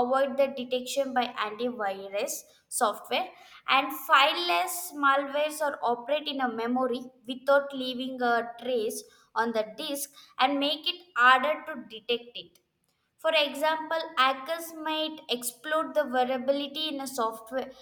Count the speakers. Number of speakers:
1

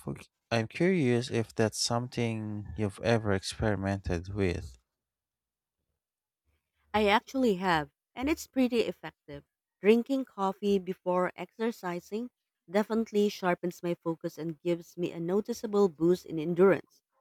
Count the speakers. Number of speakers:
2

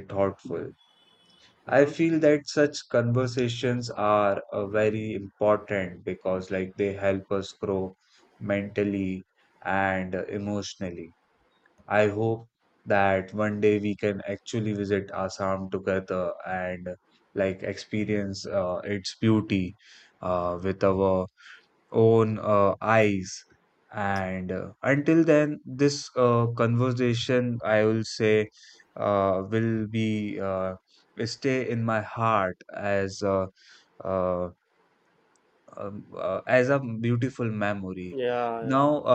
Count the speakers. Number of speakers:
2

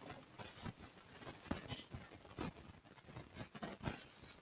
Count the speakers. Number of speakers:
0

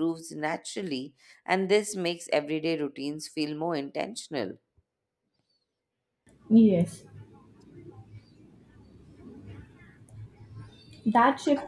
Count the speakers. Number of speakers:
2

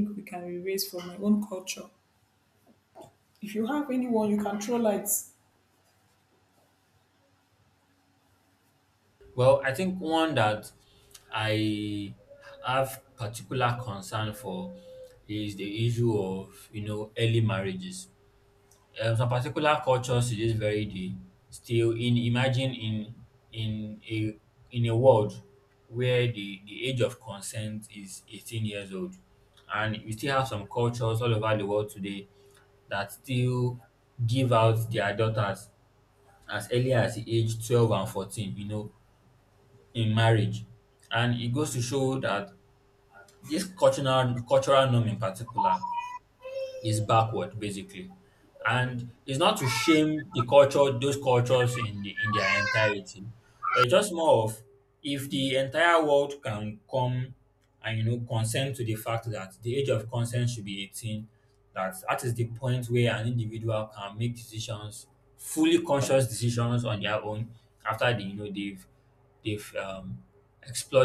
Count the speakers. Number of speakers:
2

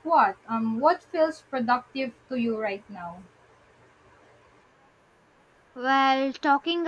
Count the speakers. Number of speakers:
2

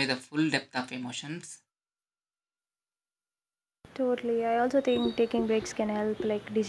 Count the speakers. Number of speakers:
2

